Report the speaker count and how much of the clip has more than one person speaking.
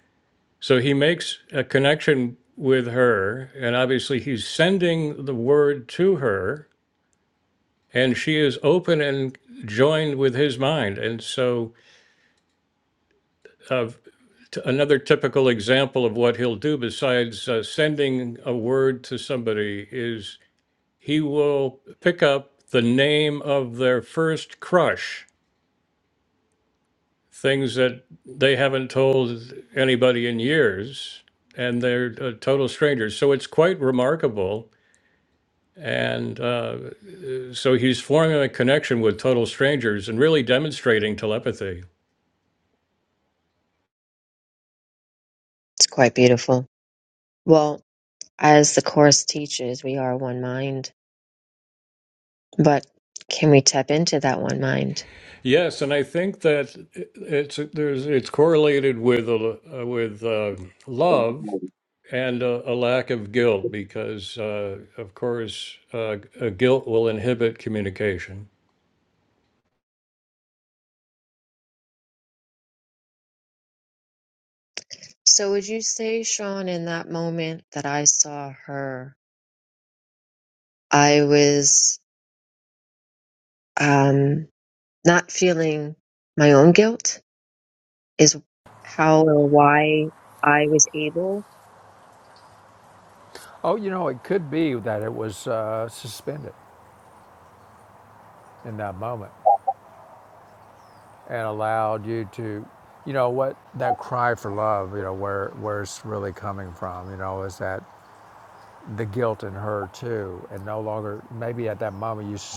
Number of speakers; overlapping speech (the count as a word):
three, no overlap